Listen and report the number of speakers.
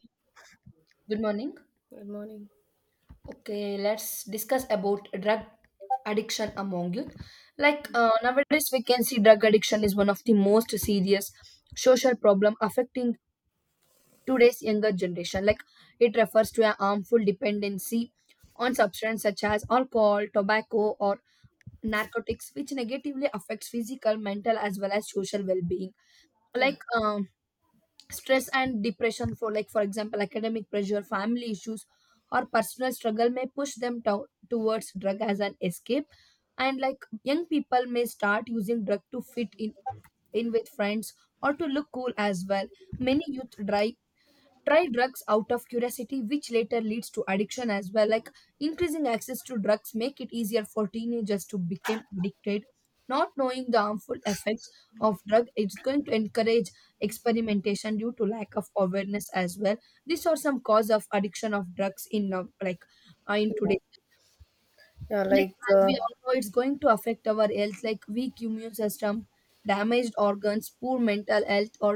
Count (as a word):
two